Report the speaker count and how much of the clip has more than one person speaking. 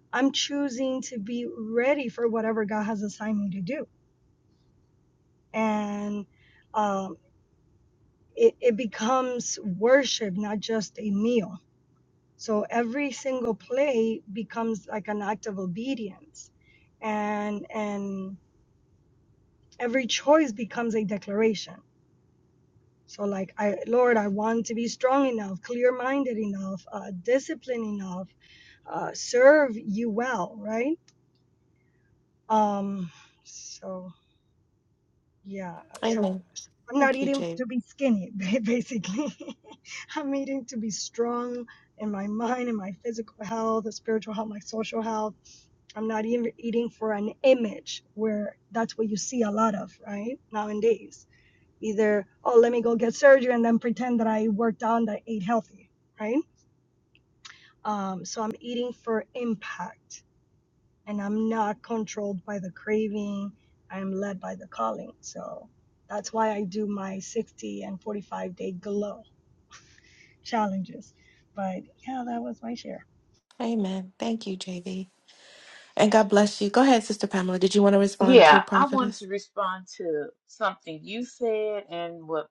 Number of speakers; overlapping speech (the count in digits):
3, about 2%